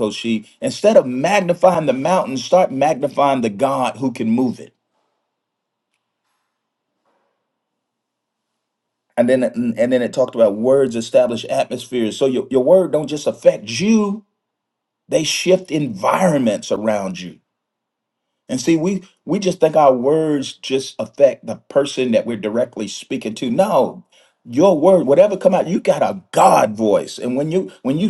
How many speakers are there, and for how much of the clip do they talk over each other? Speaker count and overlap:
1, no overlap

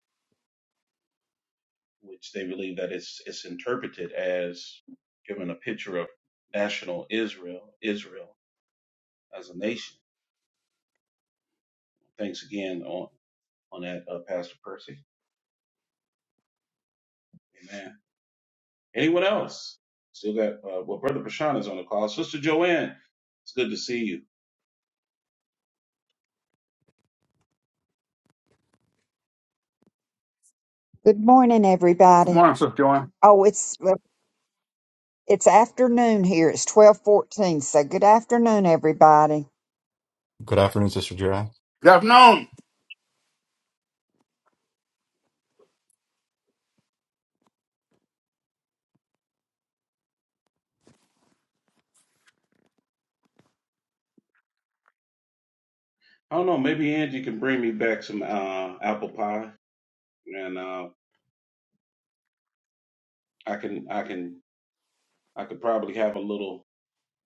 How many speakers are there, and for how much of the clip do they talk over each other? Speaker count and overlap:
4, under 1%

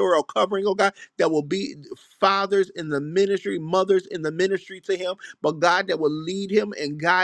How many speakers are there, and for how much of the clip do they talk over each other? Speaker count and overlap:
1, no overlap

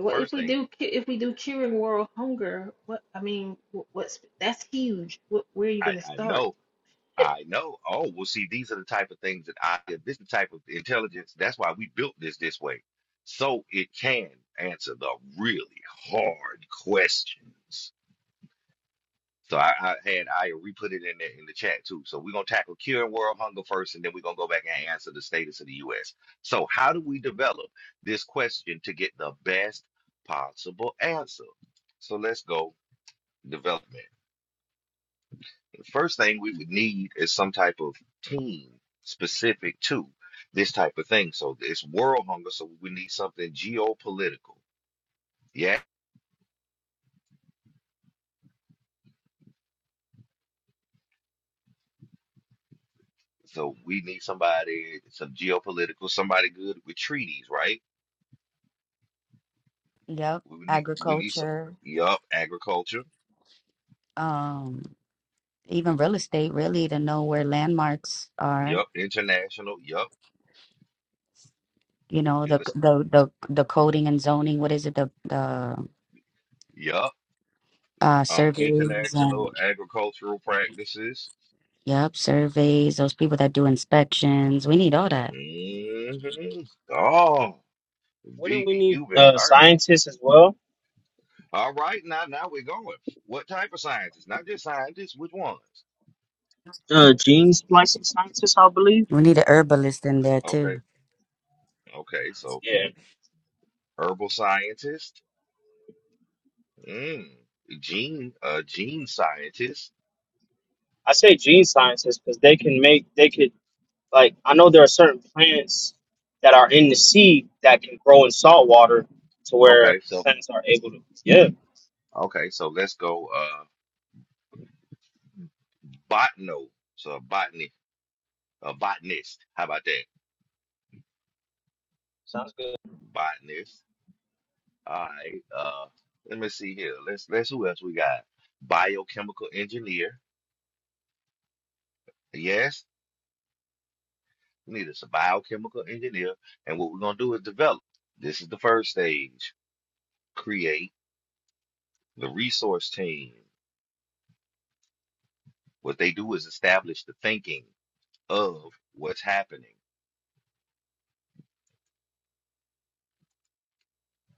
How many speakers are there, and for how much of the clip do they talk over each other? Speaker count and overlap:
4, about 3%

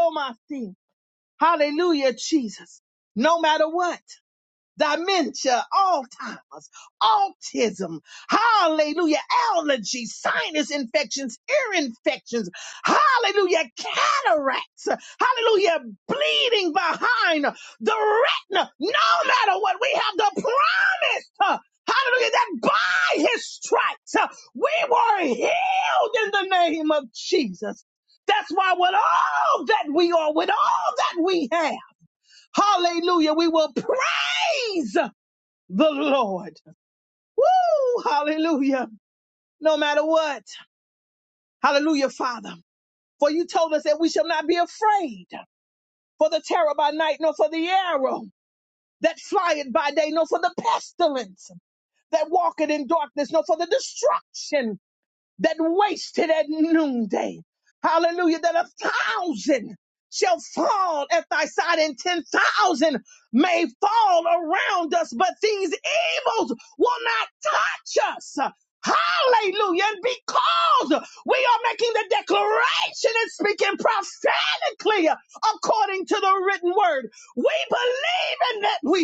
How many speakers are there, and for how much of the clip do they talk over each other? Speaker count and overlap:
1, no overlap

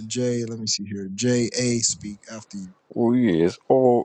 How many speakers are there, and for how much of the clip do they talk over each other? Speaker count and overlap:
2, no overlap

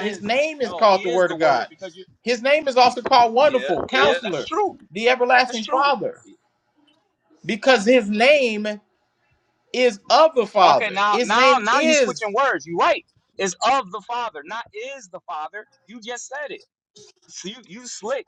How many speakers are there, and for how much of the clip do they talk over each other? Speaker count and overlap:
2, about 25%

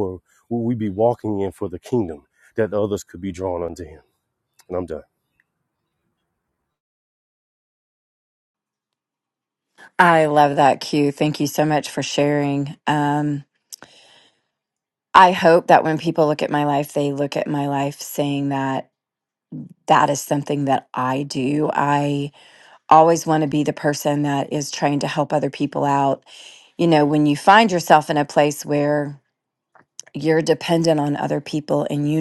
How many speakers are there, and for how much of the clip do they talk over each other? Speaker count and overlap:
2, no overlap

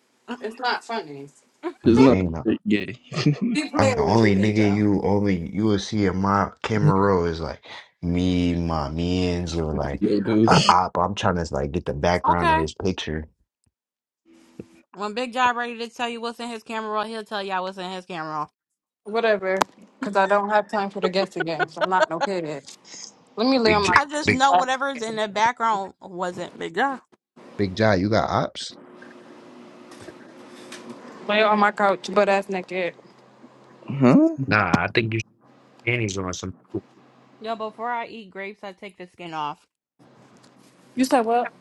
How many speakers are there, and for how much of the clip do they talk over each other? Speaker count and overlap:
4, about 9%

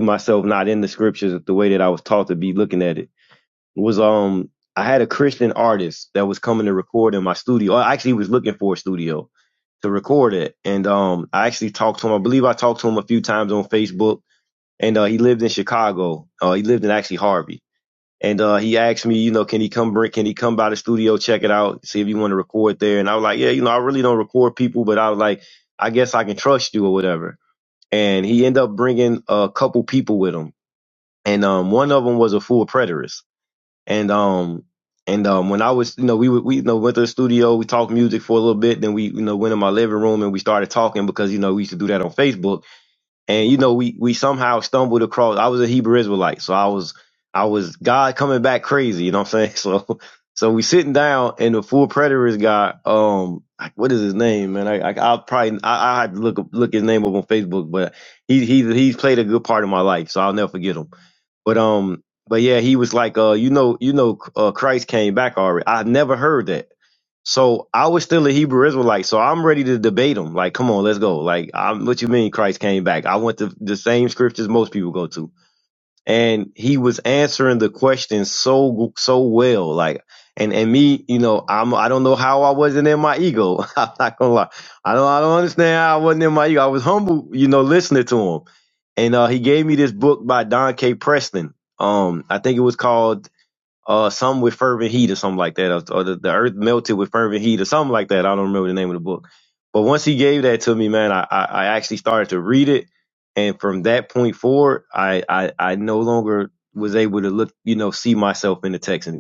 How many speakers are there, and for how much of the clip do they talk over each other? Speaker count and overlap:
1, no overlap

